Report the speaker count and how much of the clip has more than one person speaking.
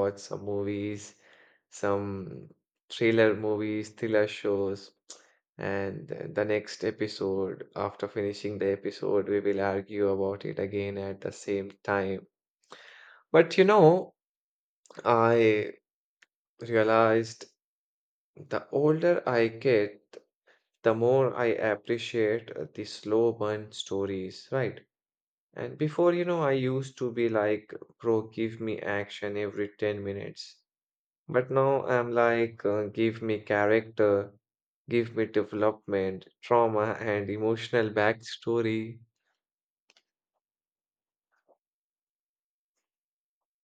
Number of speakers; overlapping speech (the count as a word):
one, no overlap